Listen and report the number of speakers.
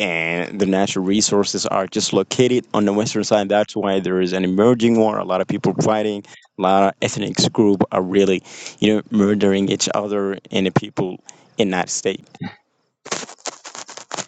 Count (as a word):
one